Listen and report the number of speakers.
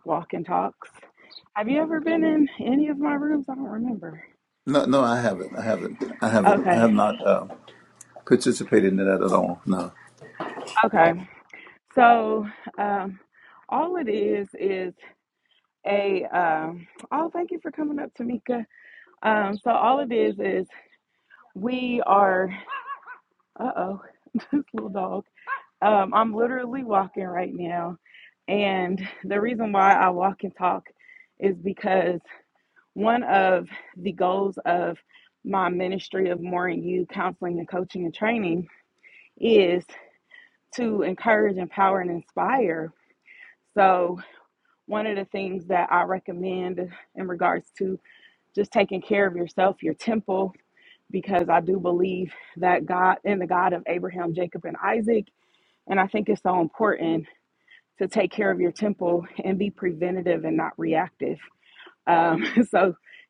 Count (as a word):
two